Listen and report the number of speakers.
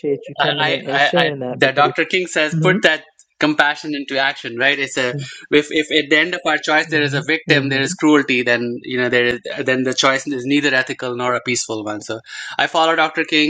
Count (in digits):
2